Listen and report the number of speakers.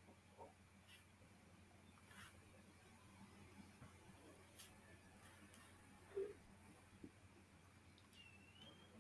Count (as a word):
zero